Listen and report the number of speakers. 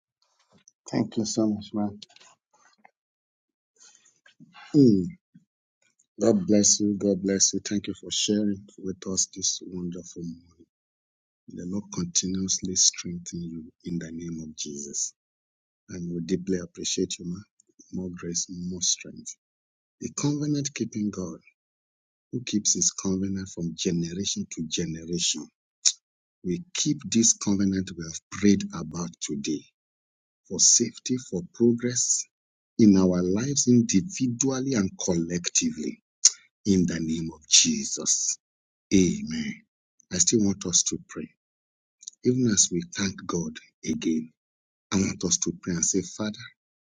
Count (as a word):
one